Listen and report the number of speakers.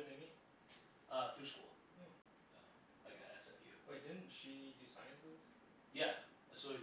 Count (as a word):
two